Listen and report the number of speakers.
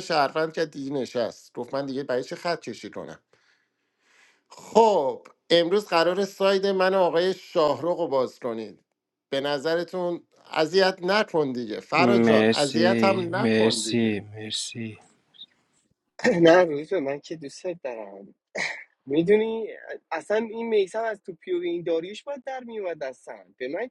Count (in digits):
3